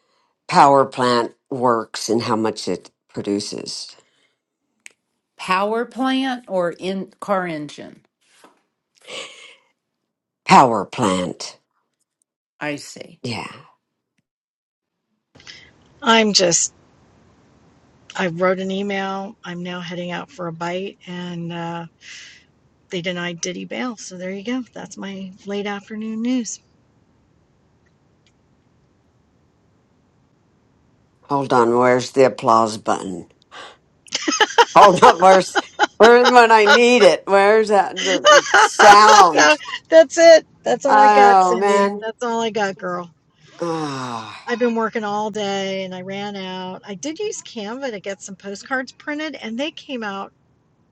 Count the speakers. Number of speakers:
3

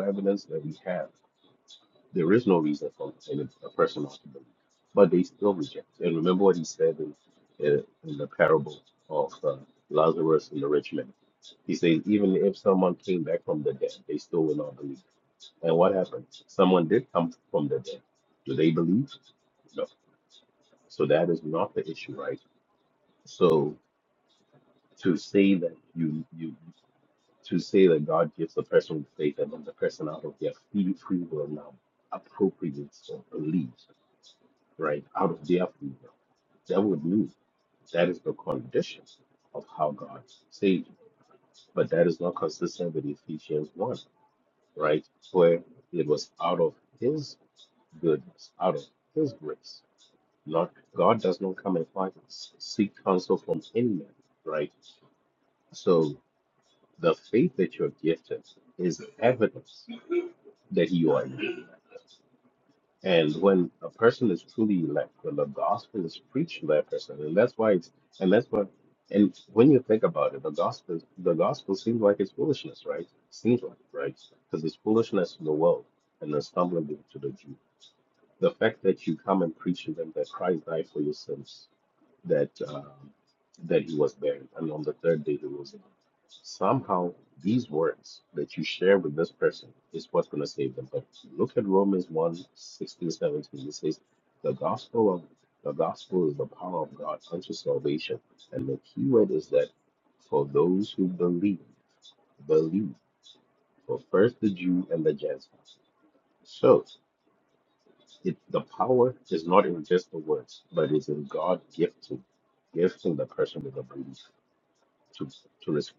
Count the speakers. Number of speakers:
1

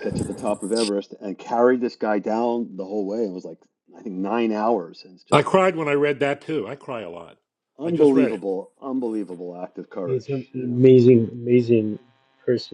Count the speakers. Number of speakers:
3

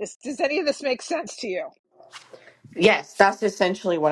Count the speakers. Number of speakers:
2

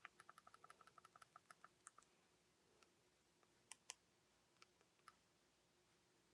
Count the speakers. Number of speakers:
0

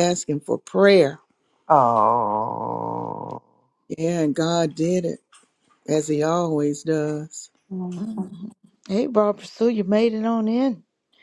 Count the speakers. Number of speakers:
3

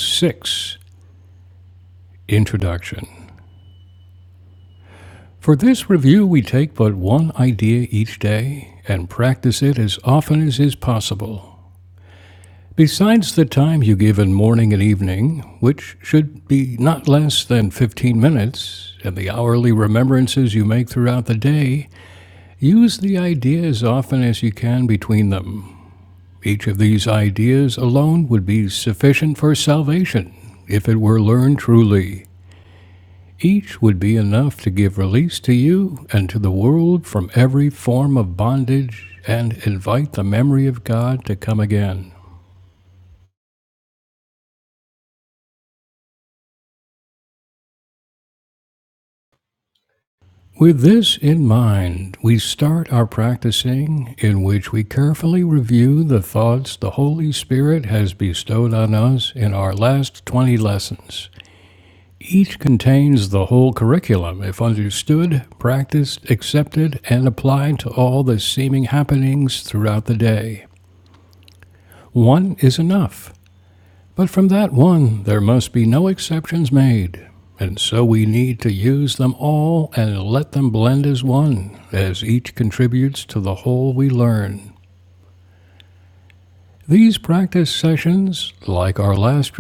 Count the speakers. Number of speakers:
1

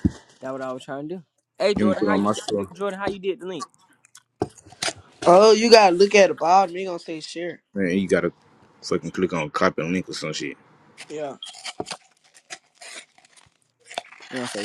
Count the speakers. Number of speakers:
3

